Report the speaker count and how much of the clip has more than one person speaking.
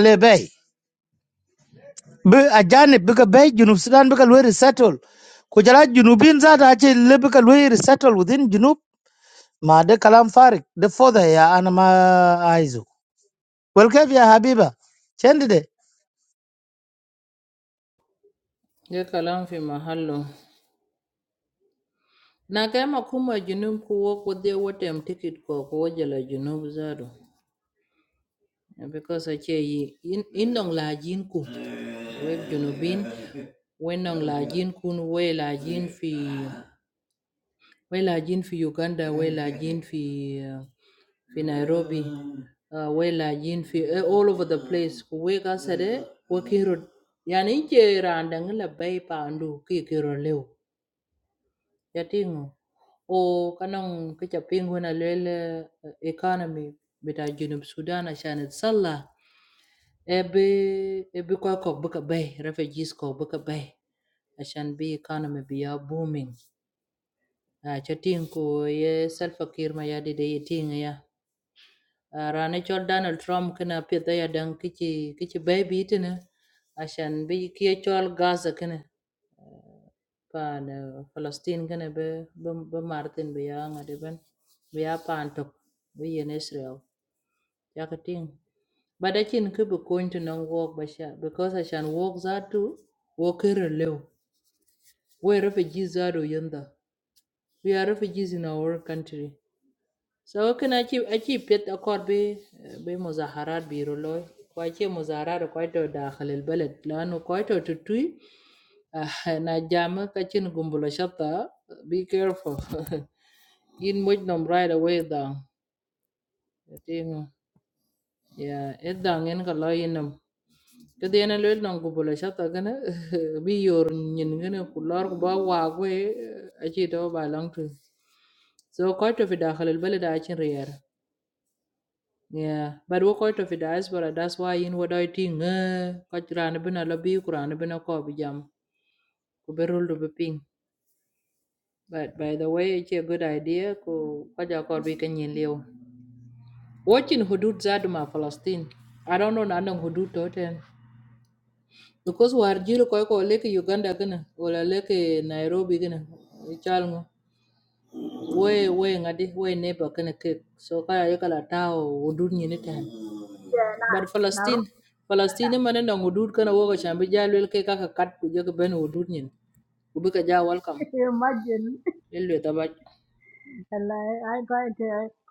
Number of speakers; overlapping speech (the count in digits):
3, under 1%